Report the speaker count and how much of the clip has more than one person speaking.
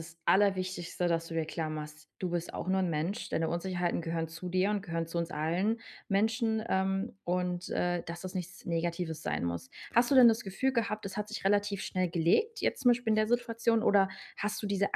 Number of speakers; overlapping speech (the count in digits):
1, no overlap